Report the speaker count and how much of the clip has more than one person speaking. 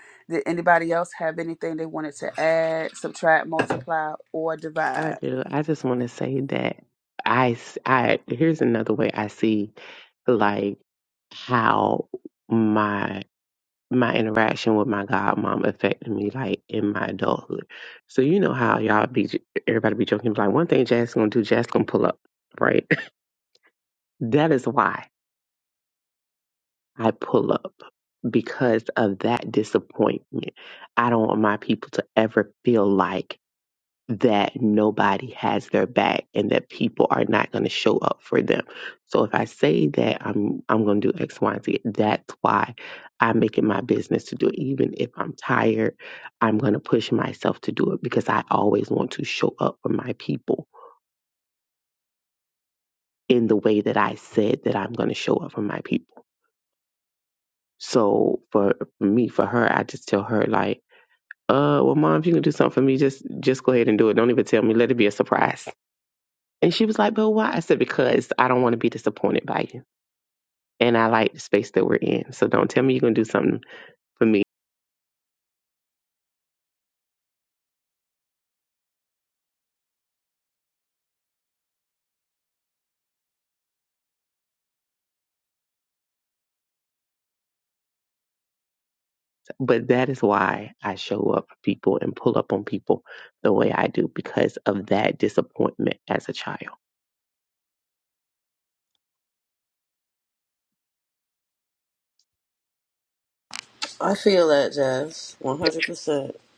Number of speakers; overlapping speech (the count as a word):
three, under 1%